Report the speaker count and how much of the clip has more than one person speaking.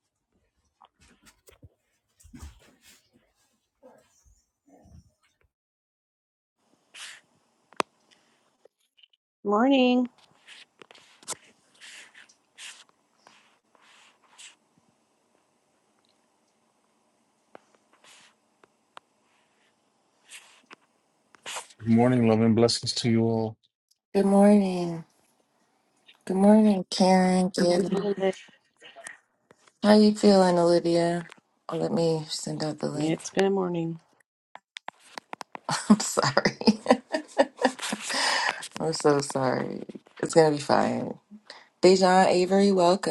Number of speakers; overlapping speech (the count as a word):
three, about 1%